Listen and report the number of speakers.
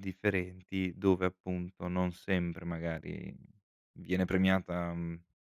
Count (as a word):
one